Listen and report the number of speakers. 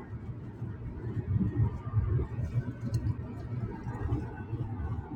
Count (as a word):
zero